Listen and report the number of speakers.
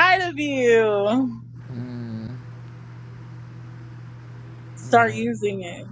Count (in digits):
2